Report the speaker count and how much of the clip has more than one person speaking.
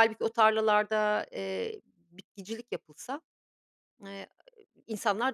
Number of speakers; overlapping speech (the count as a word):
one, no overlap